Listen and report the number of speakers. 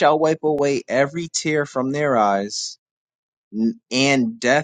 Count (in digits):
1